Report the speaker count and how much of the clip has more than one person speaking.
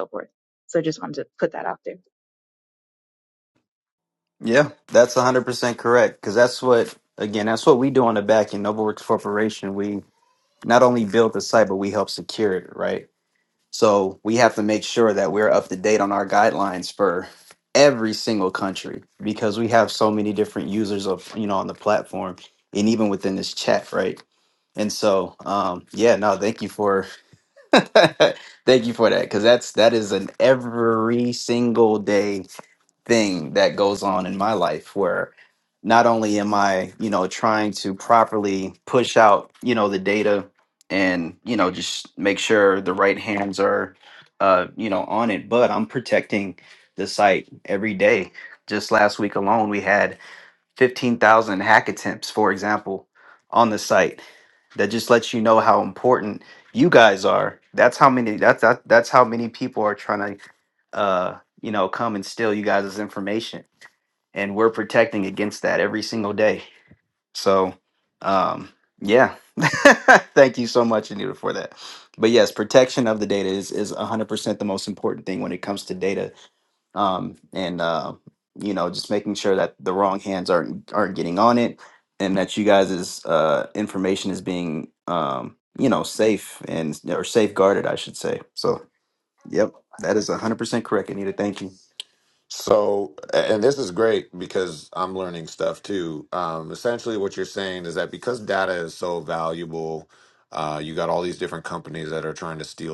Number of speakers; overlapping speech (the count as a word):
three, no overlap